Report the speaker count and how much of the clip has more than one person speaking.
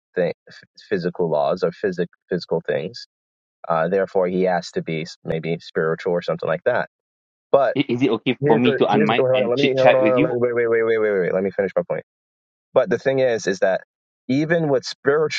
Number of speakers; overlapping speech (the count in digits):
2, about 13%